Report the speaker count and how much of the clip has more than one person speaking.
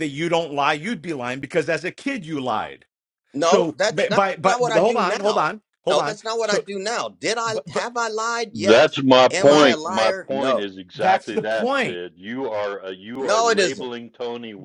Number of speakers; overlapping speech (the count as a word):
three, about 43%